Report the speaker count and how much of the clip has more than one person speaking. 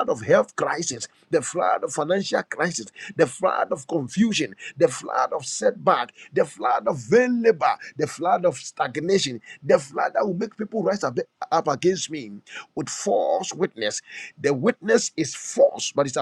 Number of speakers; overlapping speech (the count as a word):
one, no overlap